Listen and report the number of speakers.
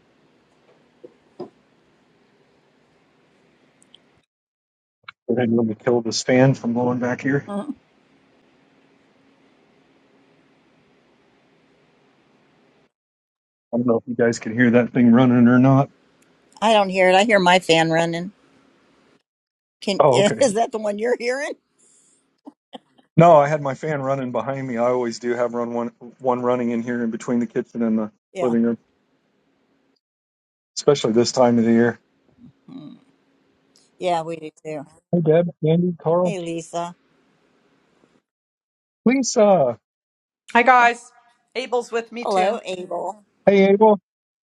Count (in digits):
3